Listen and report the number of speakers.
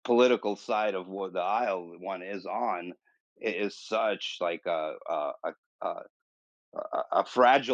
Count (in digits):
1